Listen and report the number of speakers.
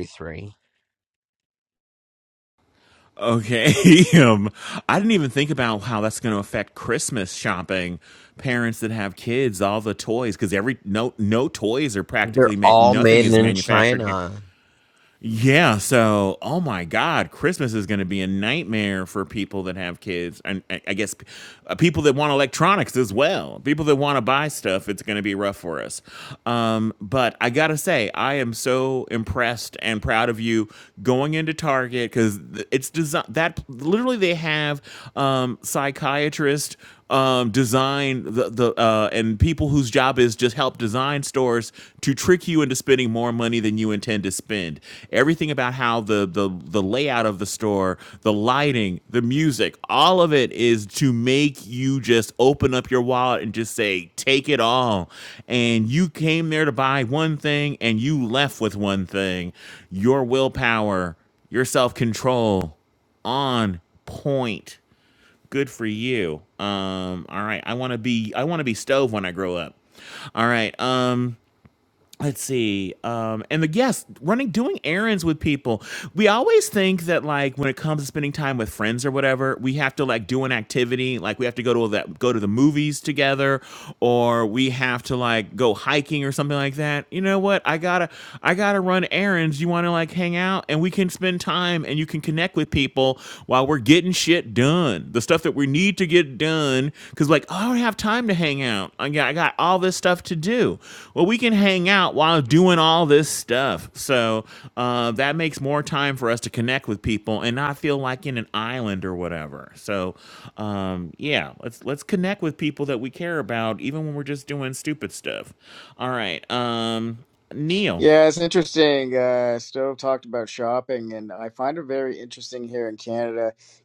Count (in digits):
3